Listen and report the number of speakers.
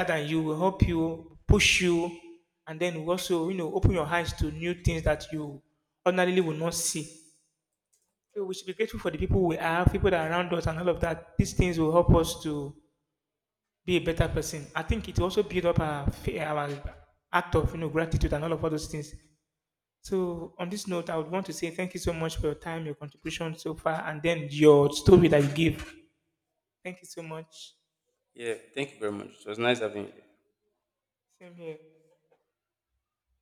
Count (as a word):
two